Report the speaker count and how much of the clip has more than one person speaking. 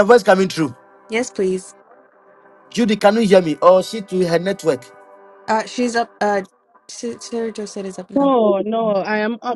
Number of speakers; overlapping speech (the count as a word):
three, about 1%